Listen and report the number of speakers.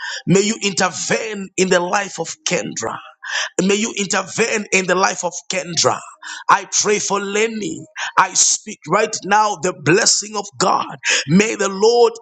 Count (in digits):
1